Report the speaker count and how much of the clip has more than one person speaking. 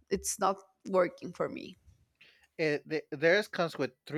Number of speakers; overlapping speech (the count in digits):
2, no overlap